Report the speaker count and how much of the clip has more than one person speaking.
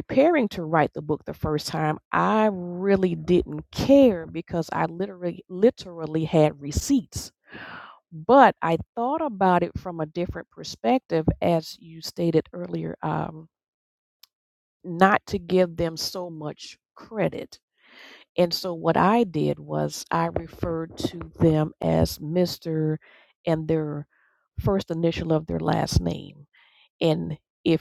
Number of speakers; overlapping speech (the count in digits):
1, no overlap